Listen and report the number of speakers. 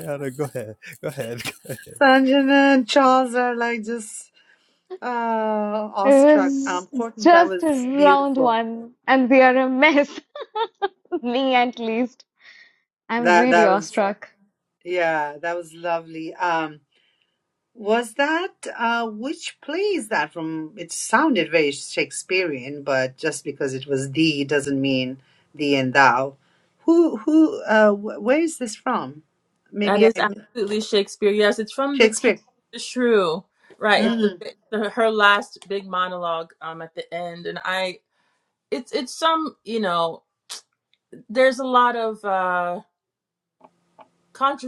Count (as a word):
four